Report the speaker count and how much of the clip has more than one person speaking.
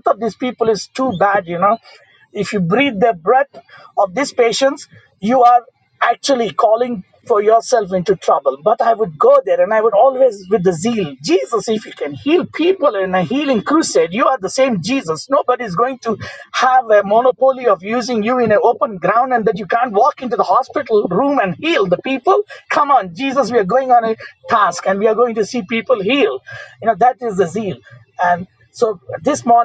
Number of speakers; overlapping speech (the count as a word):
one, no overlap